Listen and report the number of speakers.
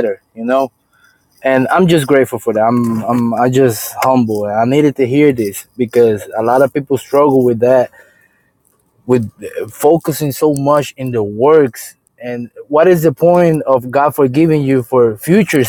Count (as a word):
one